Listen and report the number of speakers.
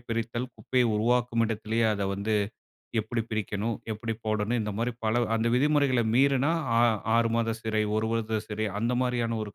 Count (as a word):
one